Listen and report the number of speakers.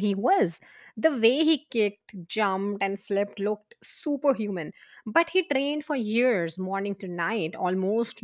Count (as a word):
one